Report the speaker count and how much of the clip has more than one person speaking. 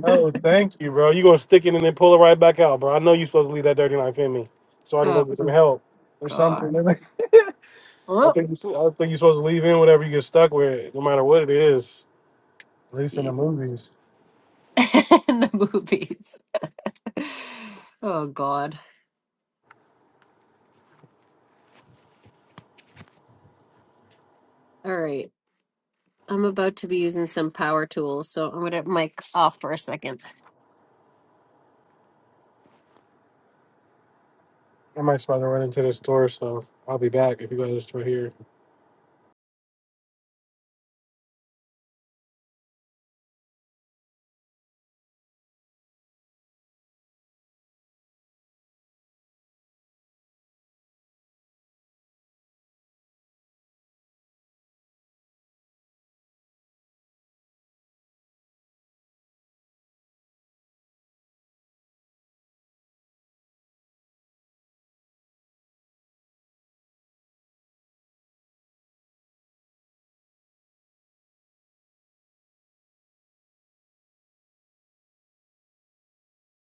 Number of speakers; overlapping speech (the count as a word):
two, about 2%